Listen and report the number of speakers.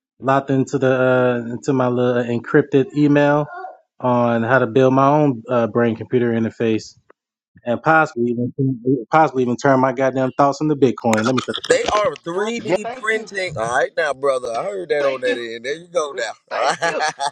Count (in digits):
3